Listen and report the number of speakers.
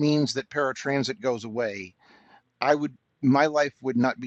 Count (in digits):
1